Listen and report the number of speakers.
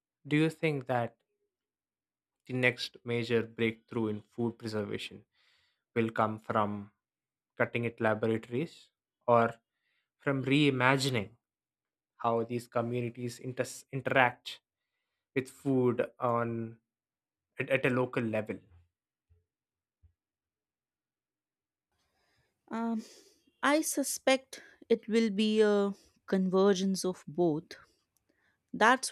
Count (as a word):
two